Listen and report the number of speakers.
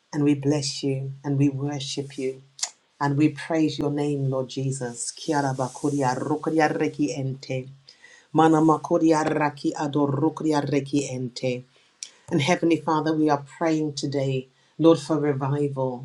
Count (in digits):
1